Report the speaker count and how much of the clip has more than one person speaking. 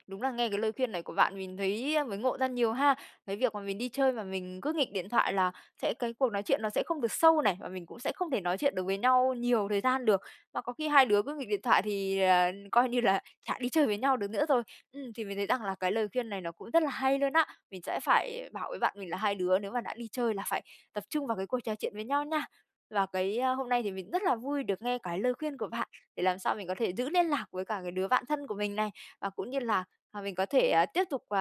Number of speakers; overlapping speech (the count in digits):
1, no overlap